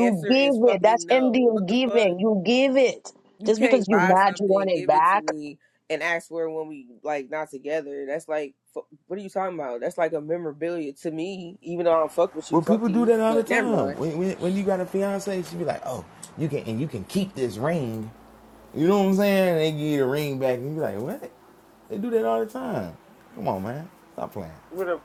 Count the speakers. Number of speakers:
three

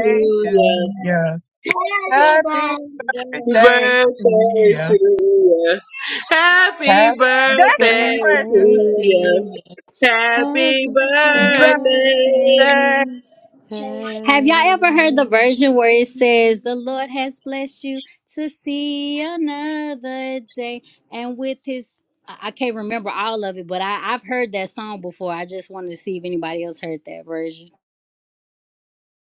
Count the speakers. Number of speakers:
four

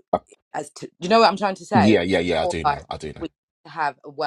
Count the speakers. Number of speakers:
two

